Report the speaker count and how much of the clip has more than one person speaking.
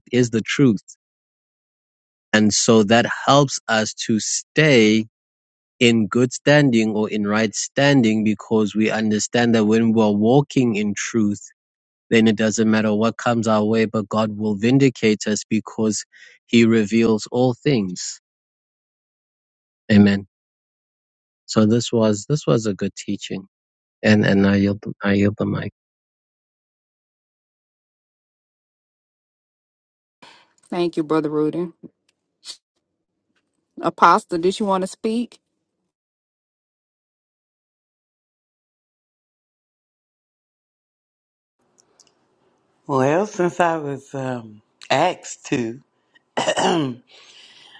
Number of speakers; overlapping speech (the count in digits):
3, no overlap